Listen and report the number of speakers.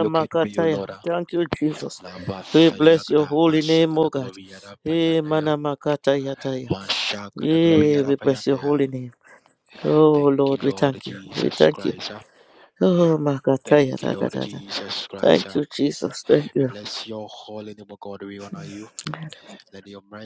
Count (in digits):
2